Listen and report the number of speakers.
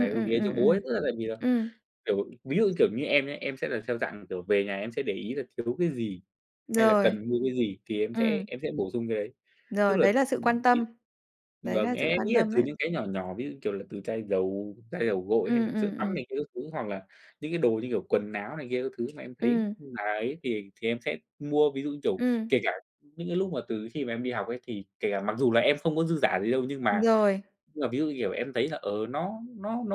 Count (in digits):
2